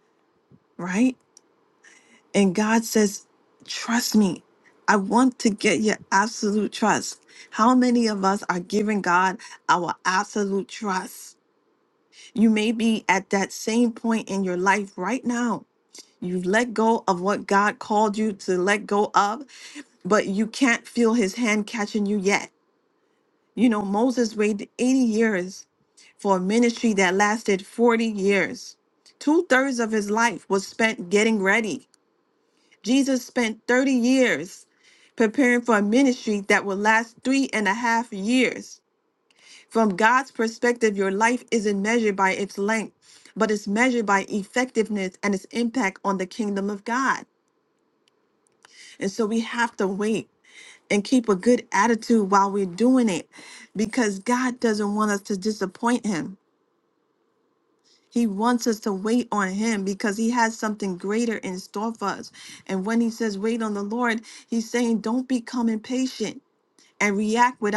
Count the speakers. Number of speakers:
1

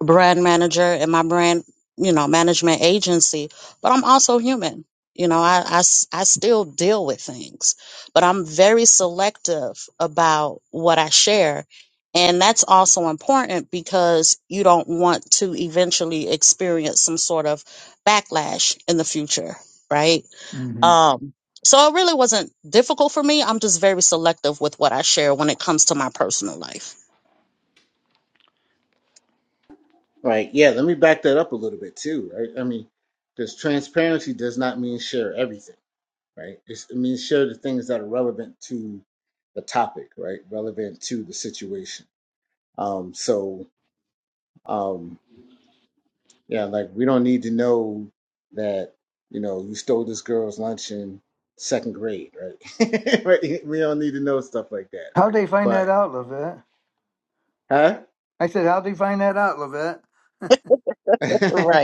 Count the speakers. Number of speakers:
3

